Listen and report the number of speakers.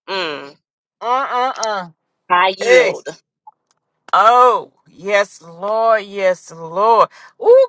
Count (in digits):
2